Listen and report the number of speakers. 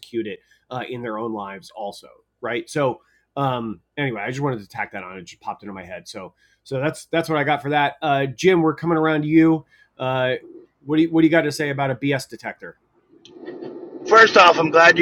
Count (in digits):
2